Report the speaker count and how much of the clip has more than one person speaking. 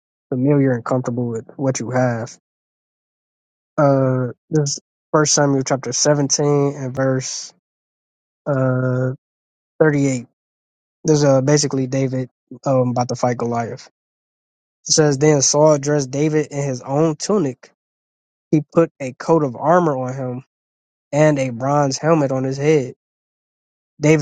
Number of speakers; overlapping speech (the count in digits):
1, no overlap